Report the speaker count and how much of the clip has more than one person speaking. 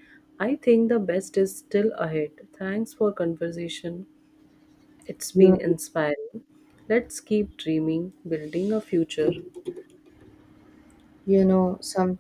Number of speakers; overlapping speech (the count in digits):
2, about 2%